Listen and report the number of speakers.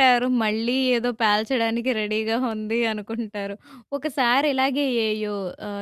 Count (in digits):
1